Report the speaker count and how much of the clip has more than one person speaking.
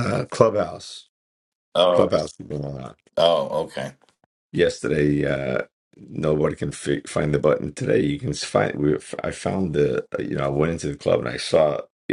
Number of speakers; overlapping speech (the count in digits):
2, about 2%